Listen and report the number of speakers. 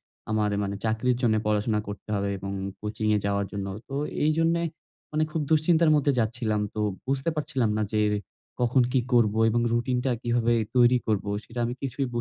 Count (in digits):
1